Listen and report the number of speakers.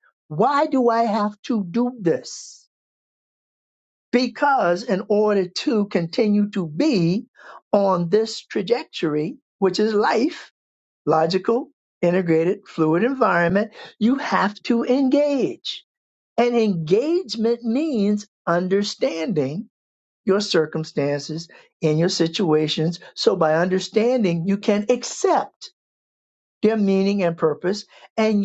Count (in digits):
1